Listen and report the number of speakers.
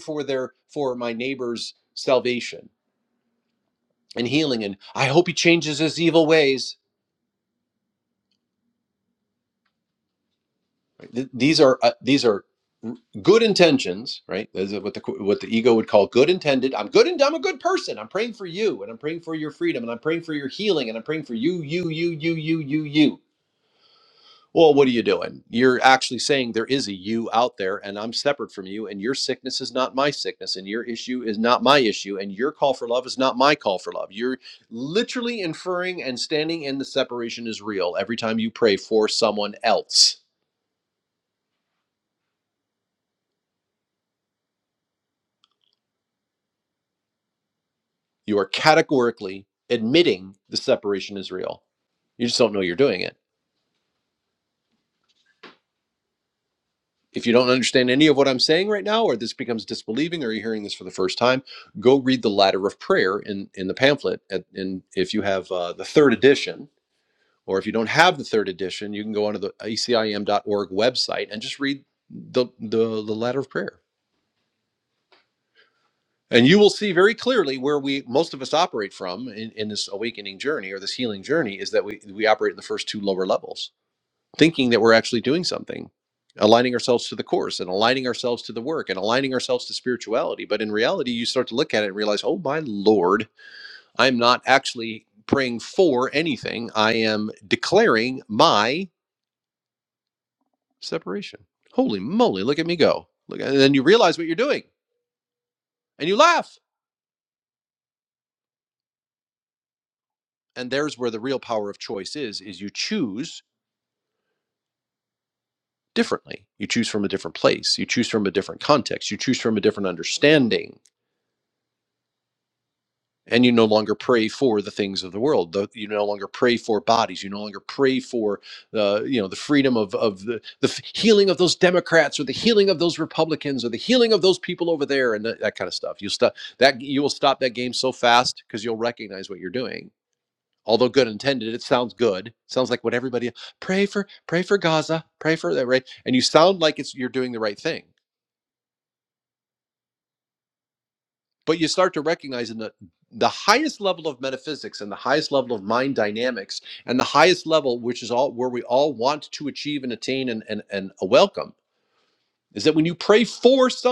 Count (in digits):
1